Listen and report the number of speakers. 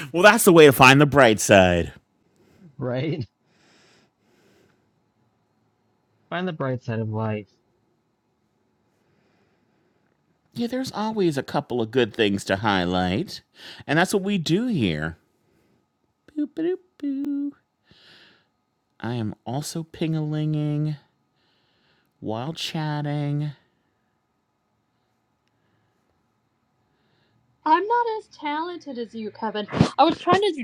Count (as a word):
three